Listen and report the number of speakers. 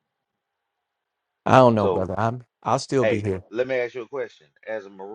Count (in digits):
2